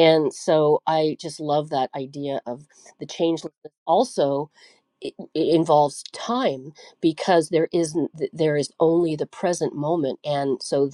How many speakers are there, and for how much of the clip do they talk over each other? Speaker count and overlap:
one, no overlap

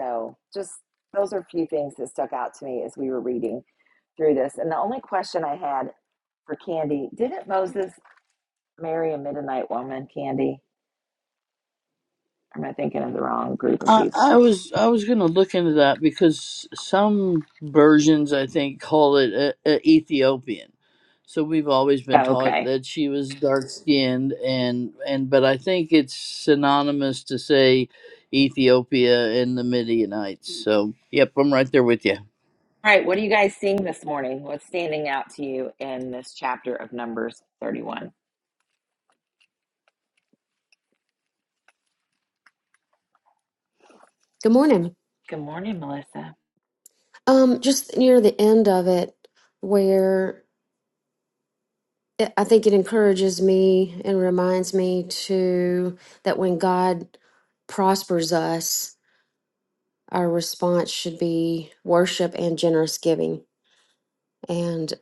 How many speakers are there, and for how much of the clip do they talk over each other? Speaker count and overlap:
three, about 2%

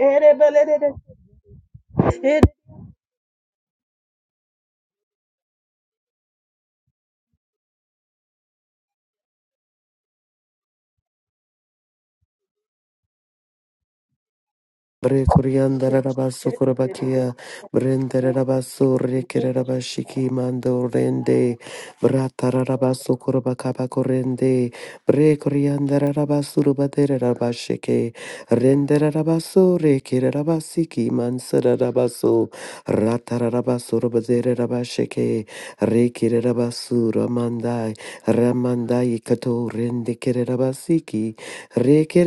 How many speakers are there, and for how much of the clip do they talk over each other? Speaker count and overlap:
two, no overlap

